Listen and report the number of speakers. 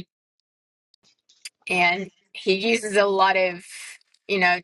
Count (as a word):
one